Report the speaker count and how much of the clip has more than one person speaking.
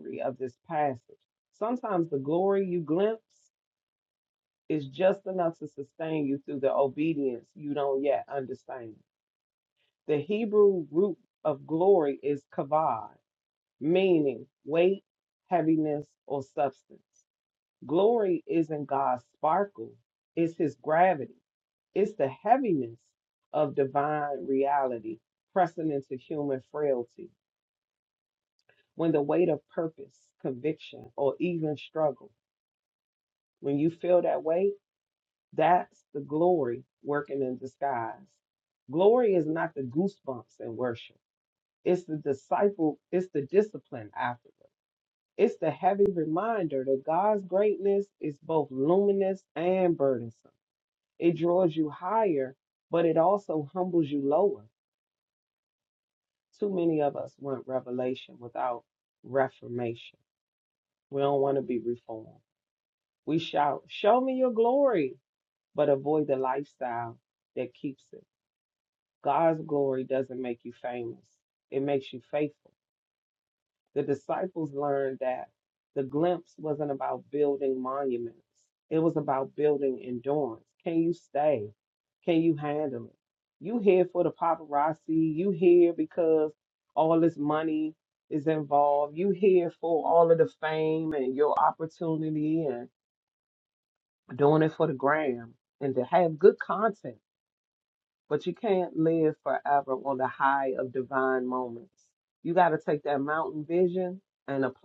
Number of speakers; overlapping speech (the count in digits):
1, no overlap